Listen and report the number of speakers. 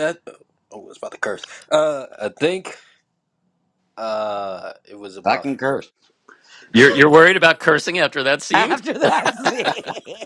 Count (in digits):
3